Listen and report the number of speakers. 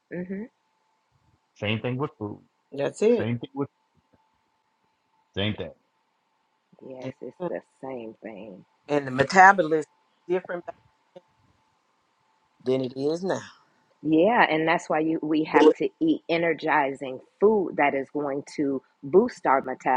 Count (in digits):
3